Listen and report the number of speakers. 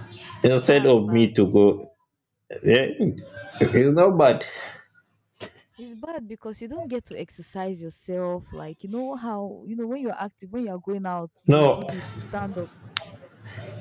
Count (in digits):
2